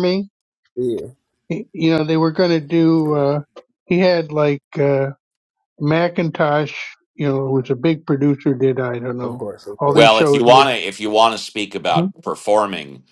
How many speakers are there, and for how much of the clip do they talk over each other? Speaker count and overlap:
three, about 7%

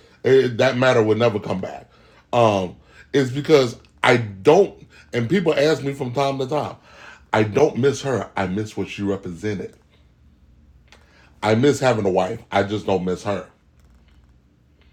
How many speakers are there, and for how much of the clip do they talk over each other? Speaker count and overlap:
one, no overlap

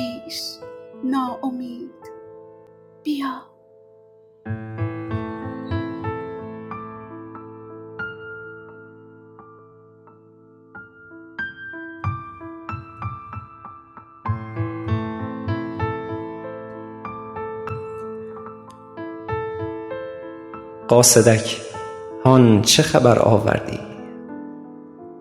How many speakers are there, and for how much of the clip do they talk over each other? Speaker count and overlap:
two, no overlap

